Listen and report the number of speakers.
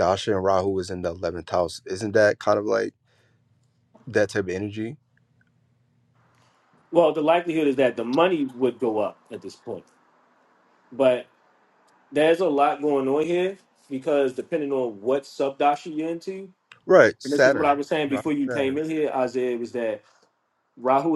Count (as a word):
two